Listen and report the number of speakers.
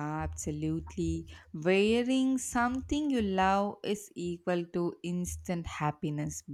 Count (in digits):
1